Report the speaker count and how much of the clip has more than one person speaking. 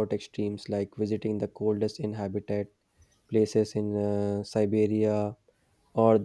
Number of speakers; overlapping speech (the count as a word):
one, no overlap